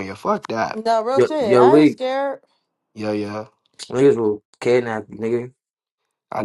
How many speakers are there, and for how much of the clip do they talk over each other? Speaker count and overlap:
3, about 12%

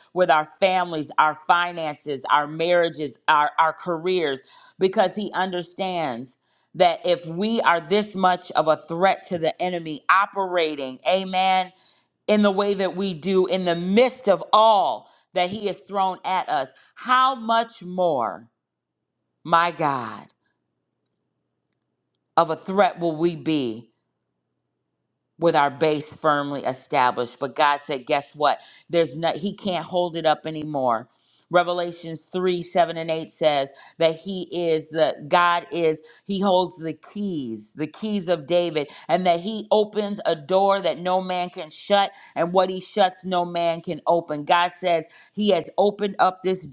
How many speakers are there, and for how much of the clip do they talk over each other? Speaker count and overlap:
1, no overlap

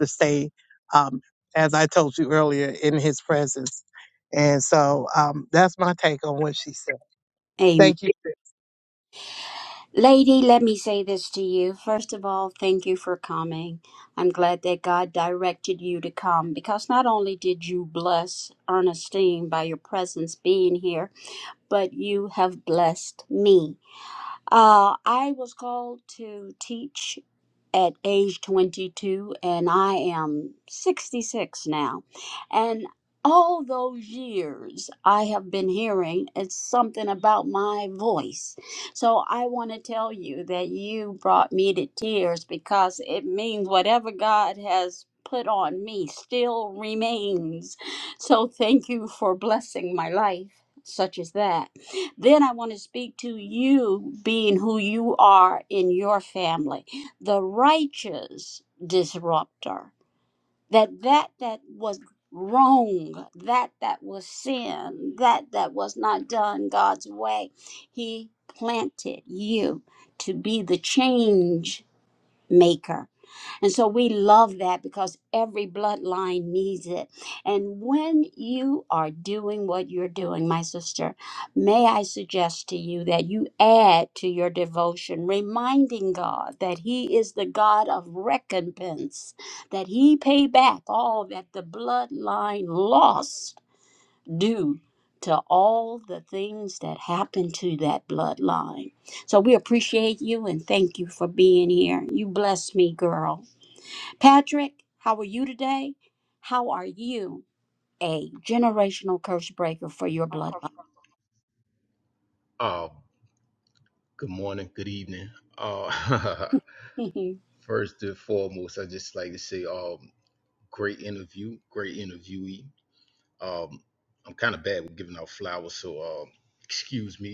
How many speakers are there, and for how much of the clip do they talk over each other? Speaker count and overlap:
3, under 1%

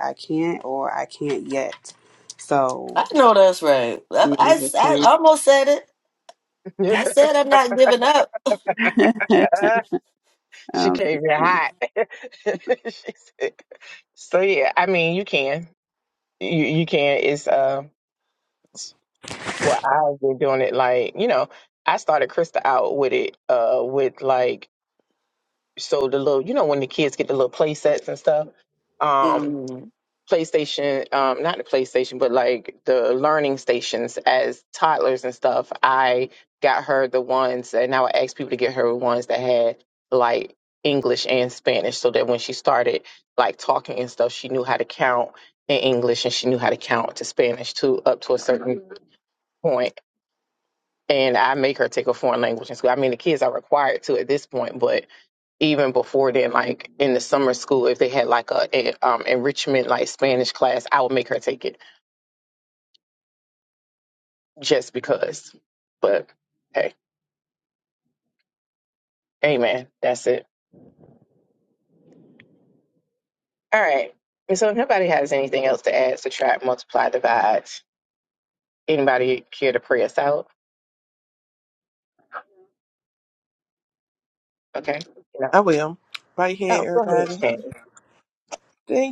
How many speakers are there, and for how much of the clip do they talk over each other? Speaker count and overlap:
4, about 3%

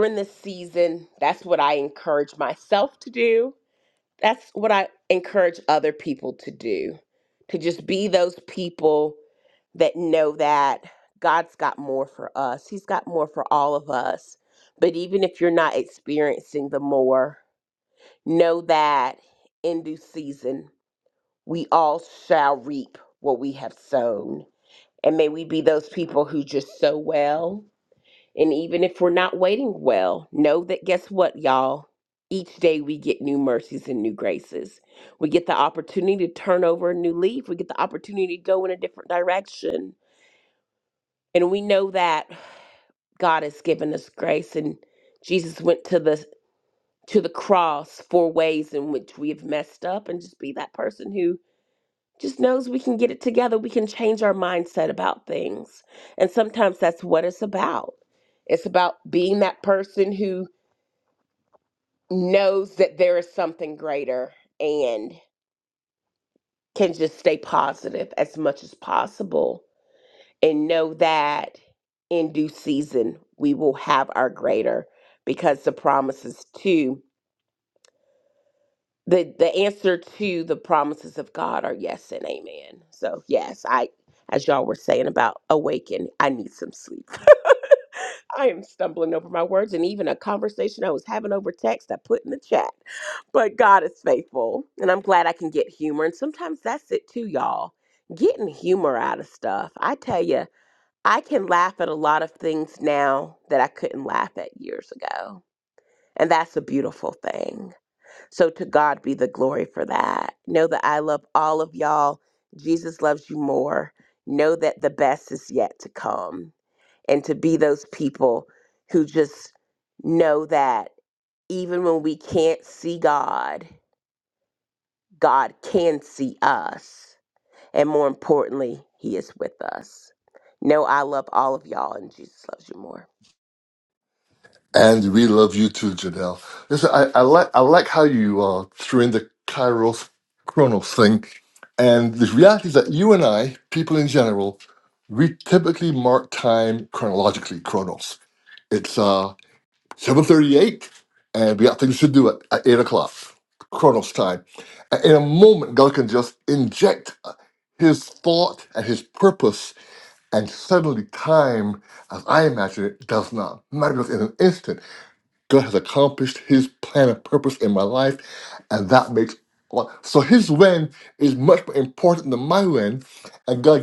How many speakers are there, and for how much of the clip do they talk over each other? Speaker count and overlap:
2, no overlap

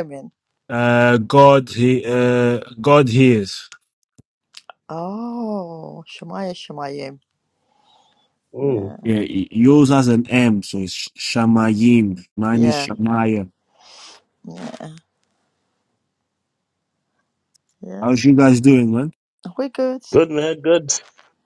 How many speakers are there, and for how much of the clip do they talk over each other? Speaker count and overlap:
3, about 3%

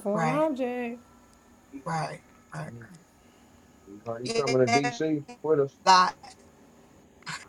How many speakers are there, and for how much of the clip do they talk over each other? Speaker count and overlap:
3, about 14%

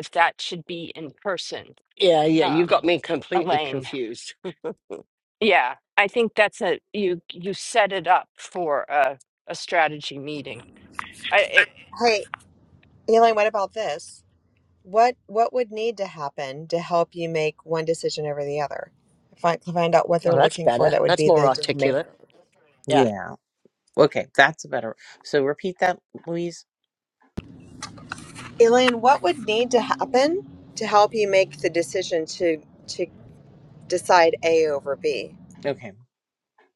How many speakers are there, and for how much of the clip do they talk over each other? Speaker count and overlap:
4, about 8%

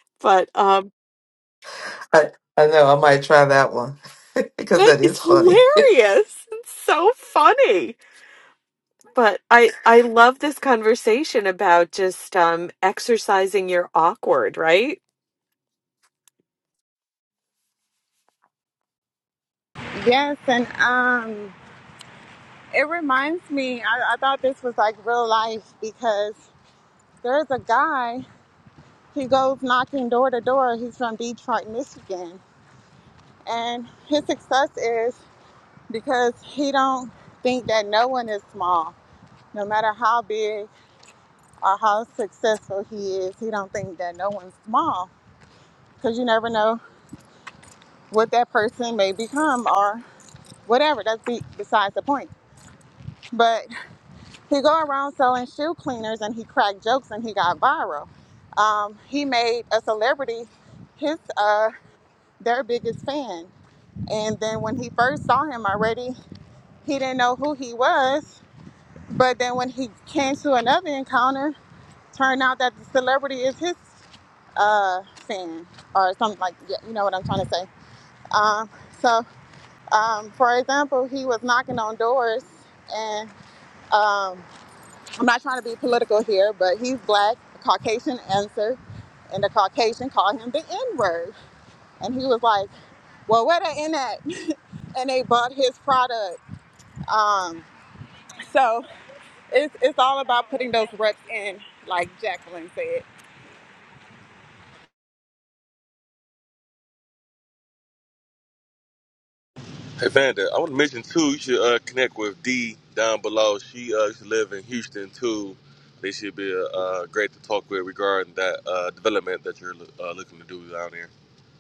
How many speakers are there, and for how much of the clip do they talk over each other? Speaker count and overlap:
4, about 1%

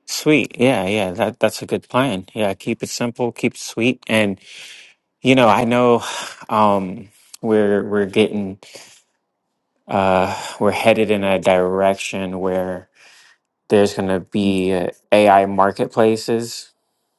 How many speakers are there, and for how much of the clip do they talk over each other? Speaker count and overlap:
1, no overlap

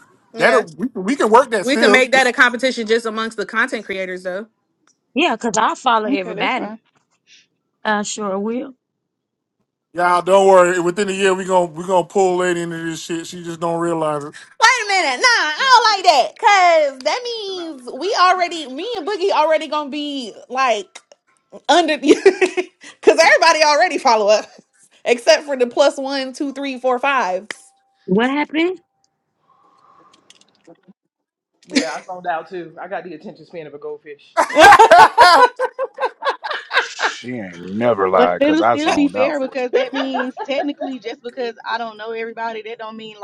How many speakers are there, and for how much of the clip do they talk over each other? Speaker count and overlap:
6, about 8%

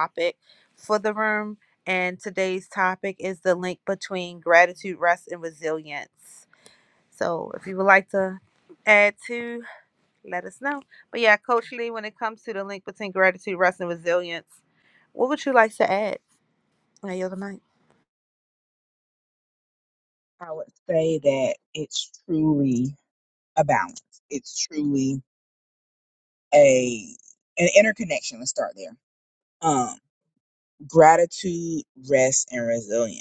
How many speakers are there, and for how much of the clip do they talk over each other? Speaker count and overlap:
2, no overlap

